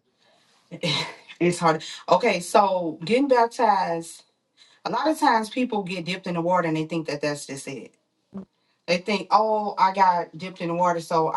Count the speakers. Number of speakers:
1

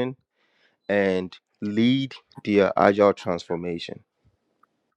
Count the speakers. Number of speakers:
1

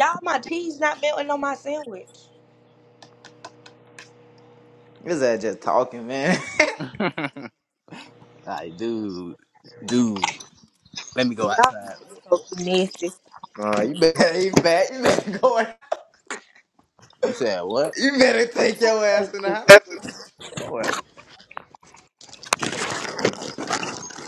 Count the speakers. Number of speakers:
3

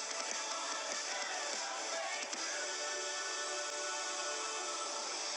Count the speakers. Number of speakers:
0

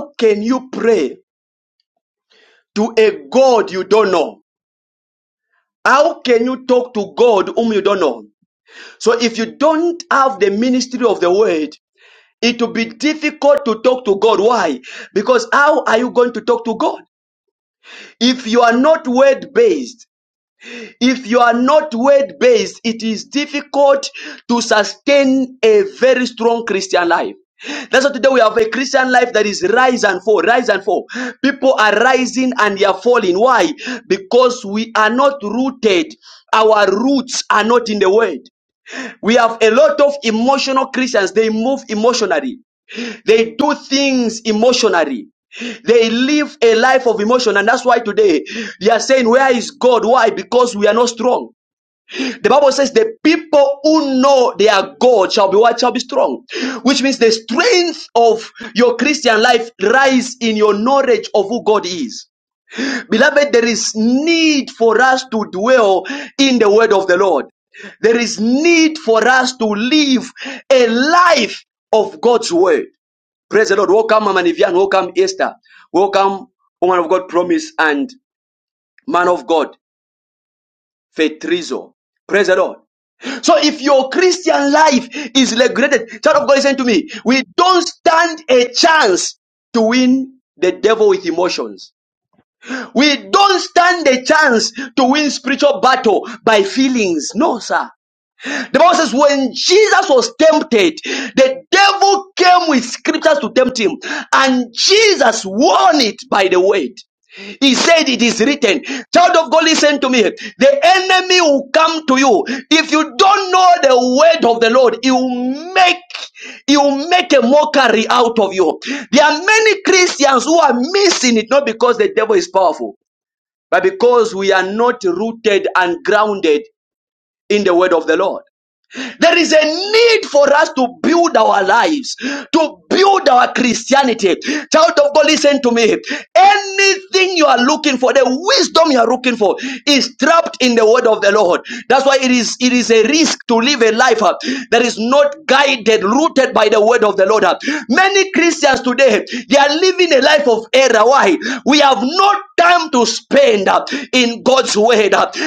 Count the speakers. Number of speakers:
1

